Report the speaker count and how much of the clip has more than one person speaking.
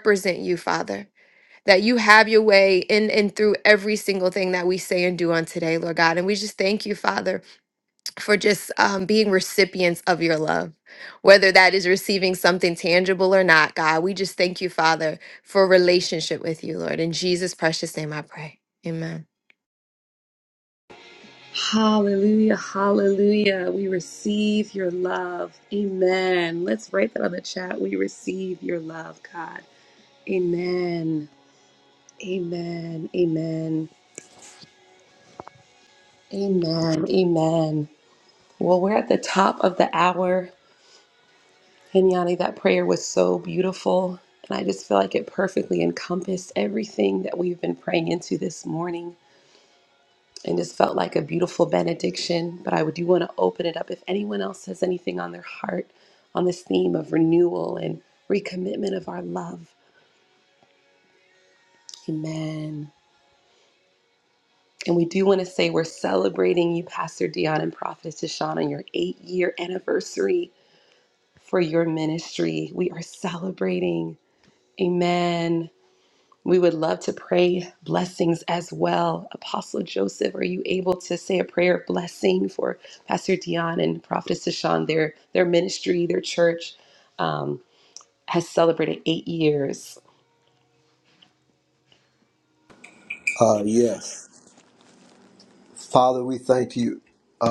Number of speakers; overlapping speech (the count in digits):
3, no overlap